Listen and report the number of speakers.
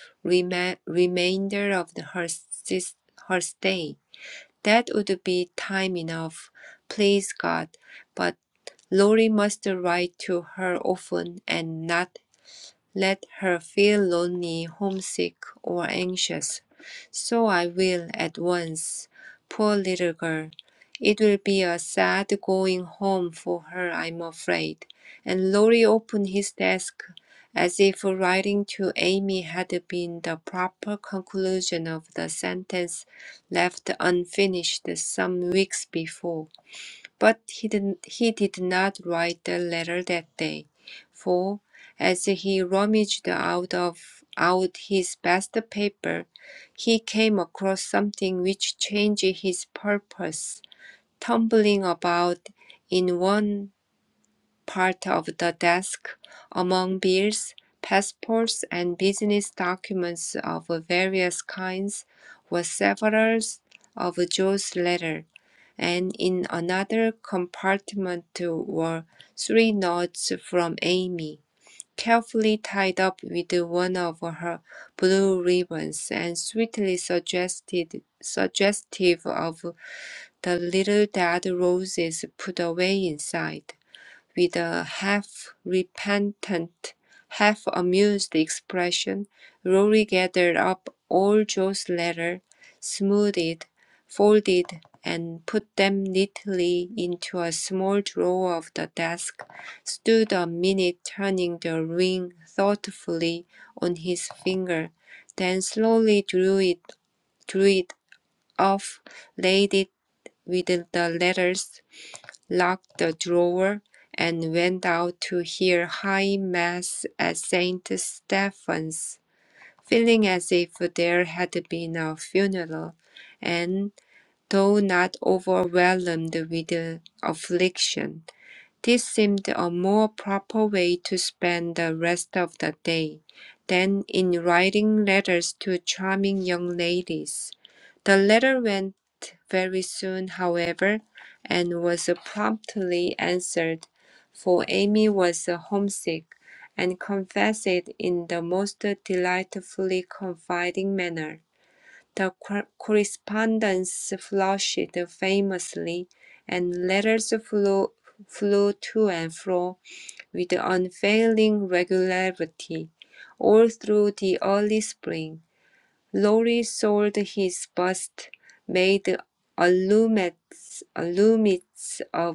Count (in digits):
1